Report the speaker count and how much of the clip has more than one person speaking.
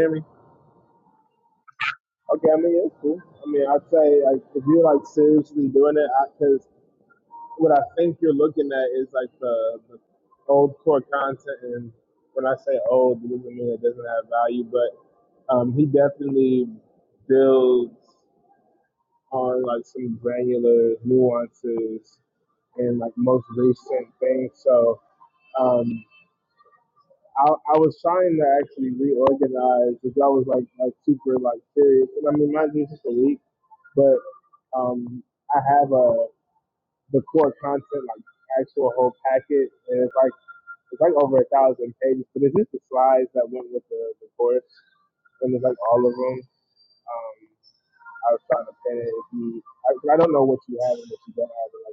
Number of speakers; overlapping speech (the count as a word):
one, no overlap